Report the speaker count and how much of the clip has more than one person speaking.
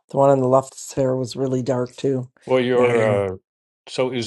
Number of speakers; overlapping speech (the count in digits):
2, about 10%